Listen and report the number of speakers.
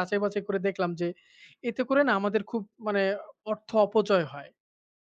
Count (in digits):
1